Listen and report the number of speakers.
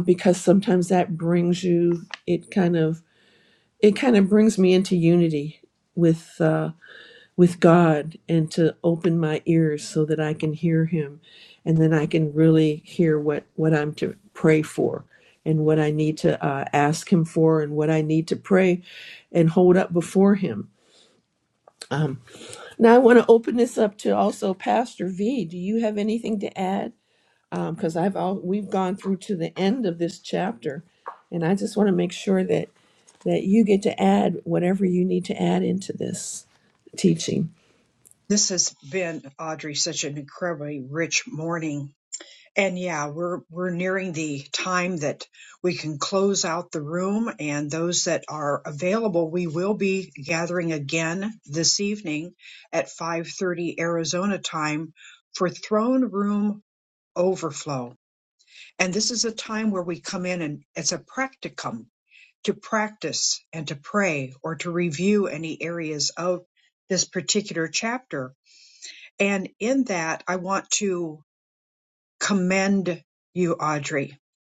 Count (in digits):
2